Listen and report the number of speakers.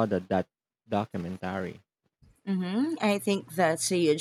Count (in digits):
2